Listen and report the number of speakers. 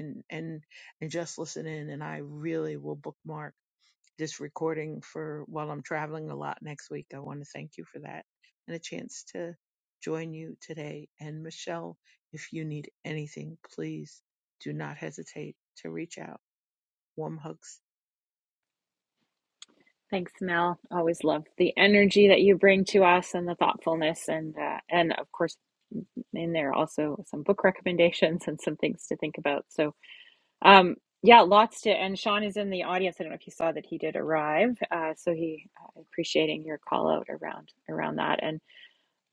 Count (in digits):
2